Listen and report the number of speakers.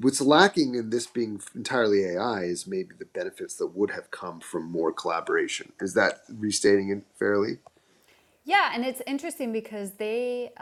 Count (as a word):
two